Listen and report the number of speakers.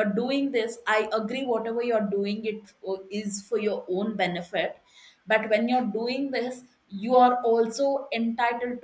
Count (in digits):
1